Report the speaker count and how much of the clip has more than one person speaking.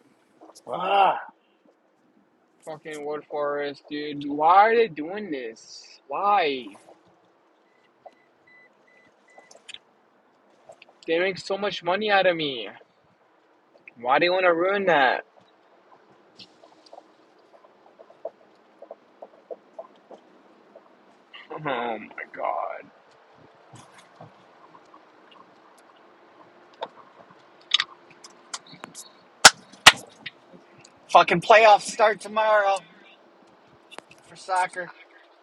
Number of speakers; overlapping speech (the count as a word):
two, no overlap